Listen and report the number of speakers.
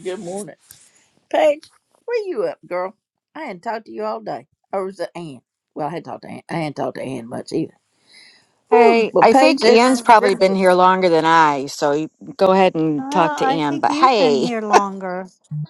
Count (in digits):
3